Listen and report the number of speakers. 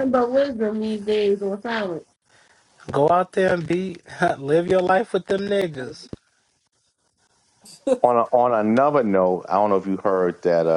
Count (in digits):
3